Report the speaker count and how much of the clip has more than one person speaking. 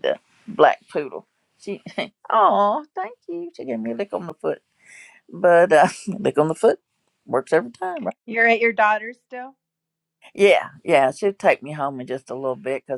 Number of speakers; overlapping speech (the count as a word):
two, no overlap